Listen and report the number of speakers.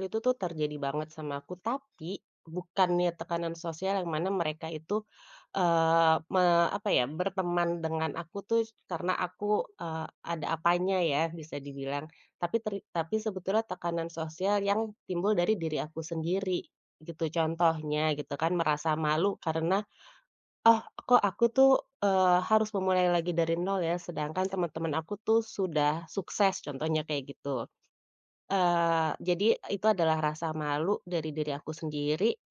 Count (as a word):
one